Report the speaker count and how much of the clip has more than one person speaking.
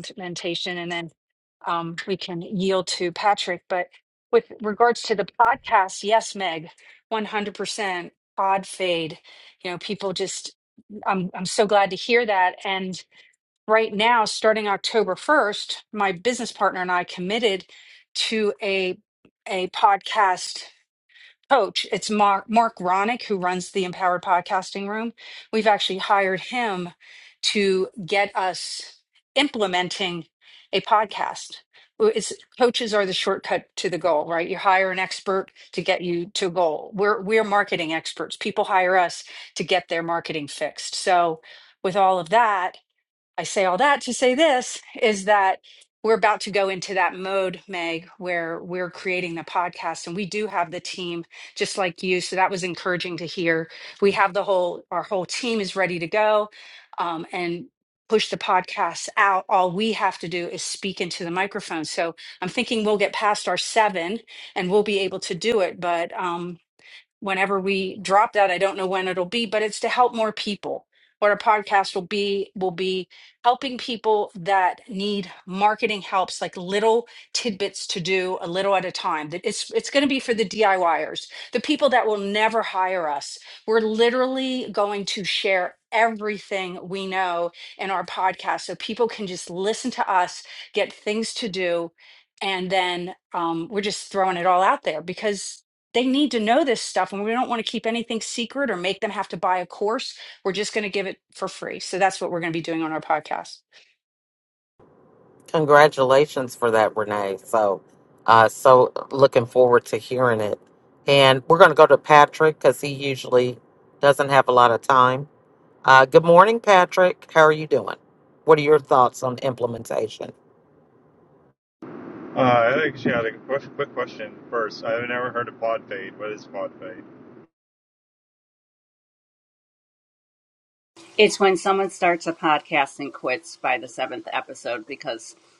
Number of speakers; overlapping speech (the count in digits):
4, no overlap